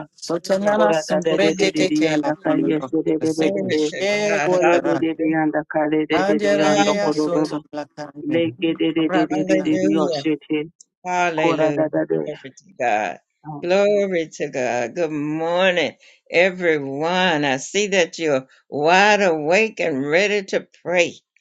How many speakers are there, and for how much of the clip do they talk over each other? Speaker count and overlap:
3, about 41%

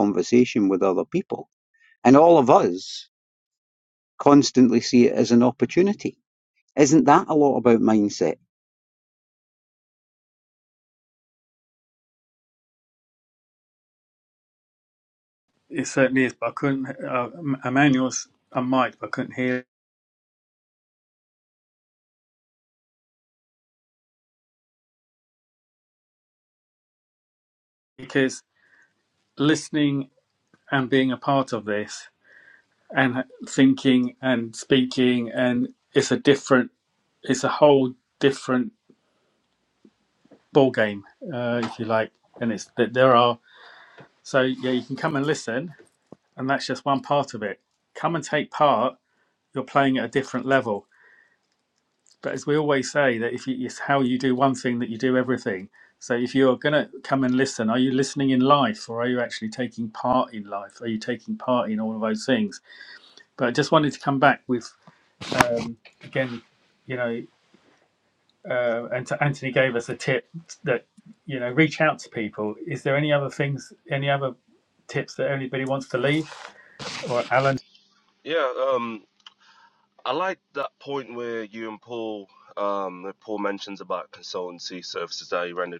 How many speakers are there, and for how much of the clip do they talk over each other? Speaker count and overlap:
3, no overlap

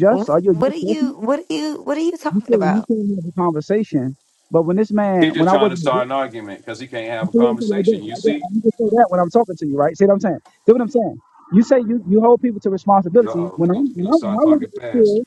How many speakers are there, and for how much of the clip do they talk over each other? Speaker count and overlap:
3, about 36%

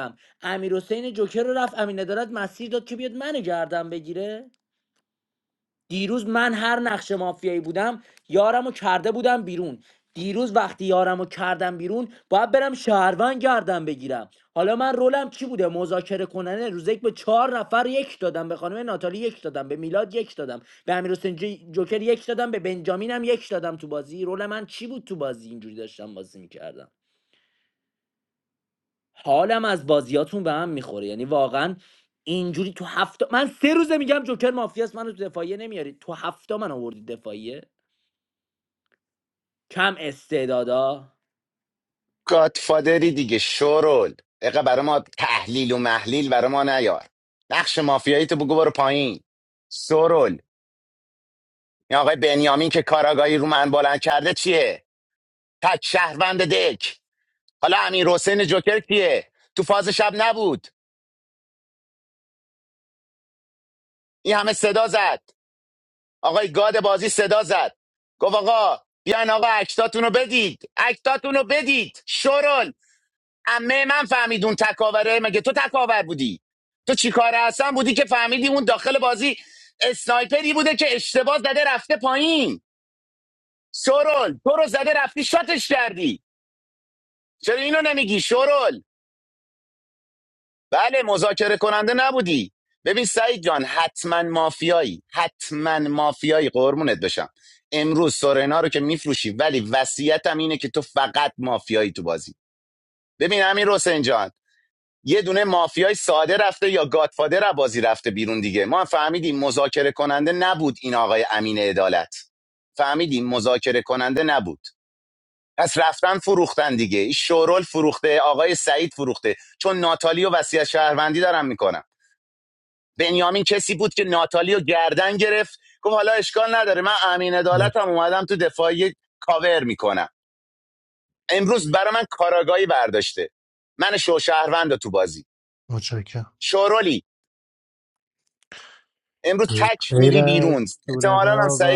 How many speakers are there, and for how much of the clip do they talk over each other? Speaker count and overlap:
3, about 1%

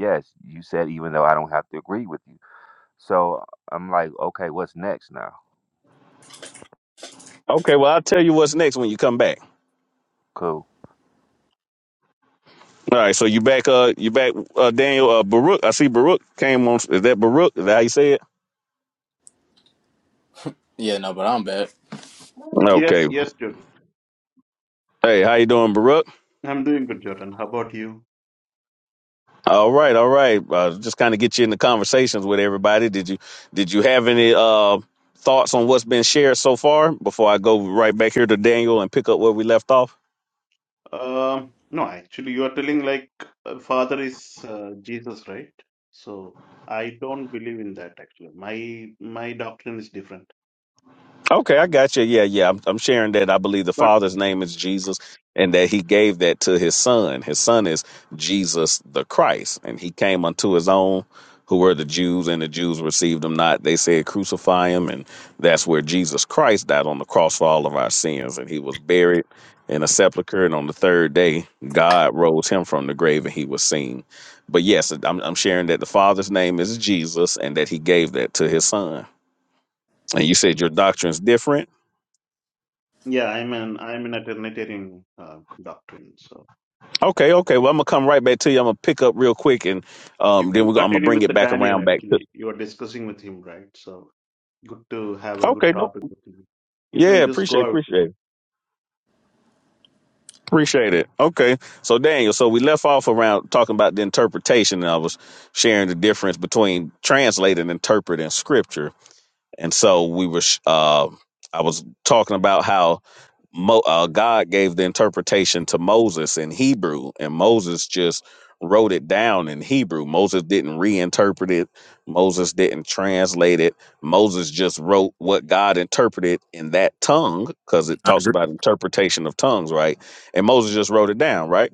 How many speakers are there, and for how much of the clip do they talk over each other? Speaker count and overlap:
4, about 3%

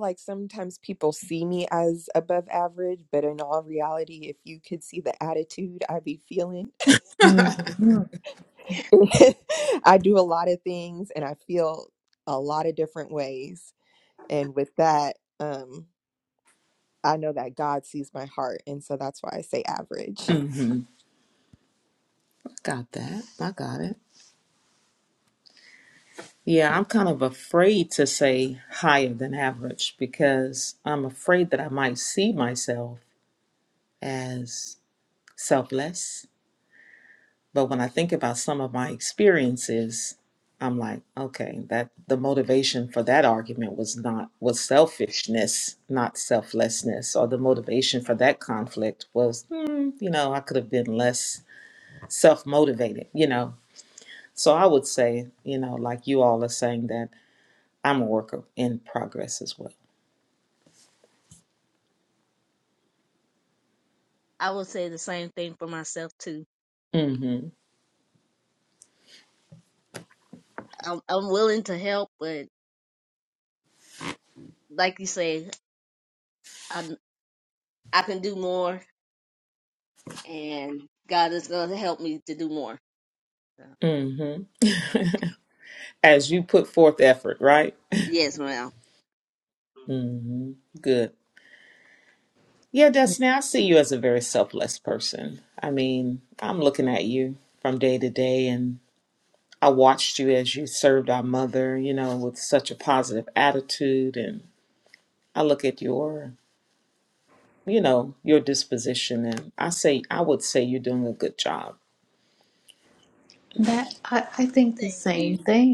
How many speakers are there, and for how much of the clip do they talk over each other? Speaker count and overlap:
4, about 1%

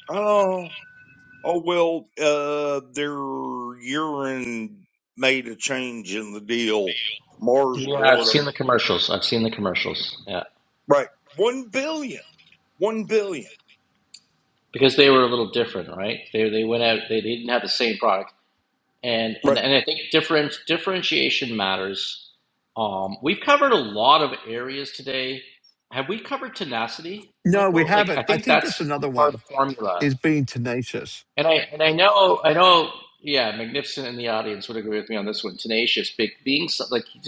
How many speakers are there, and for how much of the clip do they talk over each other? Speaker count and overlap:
3, about 7%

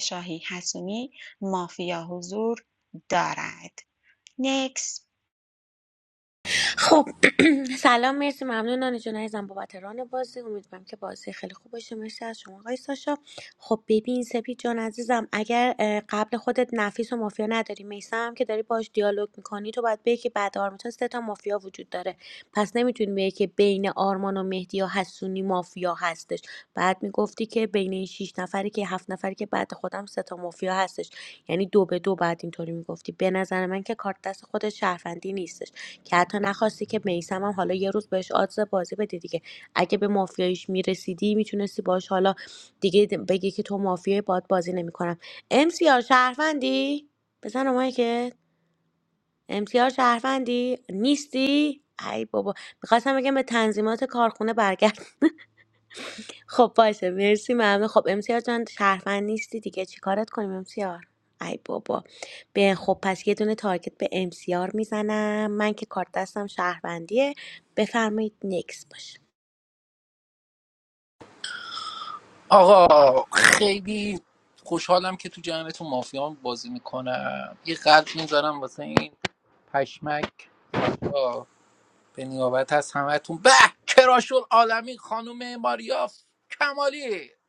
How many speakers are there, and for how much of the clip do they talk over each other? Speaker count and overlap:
3, no overlap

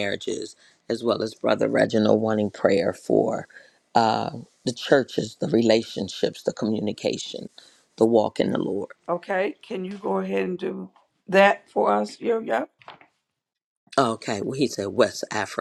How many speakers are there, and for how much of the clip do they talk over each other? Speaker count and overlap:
2, no overlap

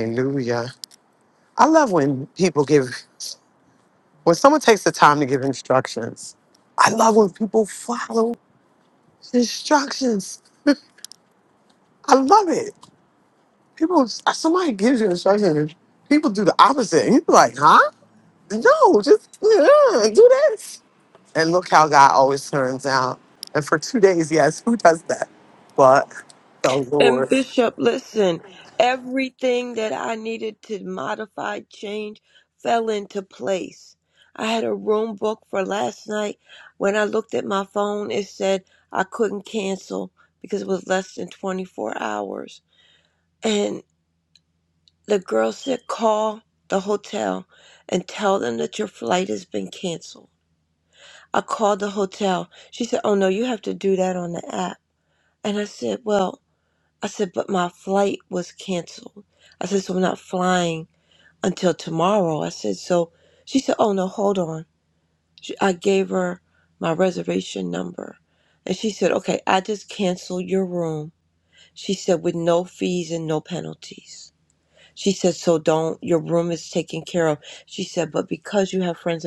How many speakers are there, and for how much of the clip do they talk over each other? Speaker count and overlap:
2, under 1%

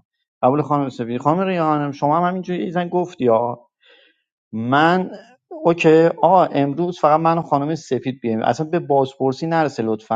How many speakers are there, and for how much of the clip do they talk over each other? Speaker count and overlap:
1, no overlap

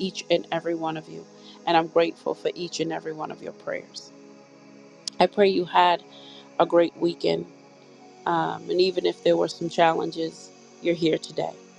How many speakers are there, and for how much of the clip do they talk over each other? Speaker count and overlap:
1, no overlap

